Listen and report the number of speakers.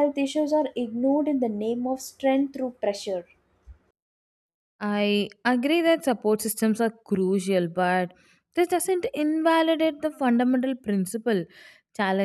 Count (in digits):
2